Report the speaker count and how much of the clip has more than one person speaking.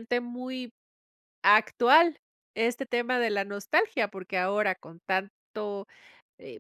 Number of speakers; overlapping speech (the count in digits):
1, no overlap